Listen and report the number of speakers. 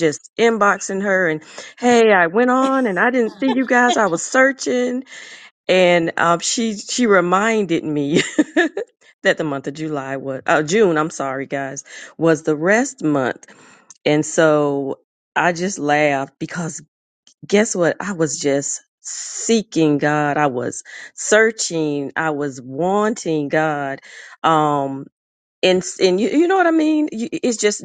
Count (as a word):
one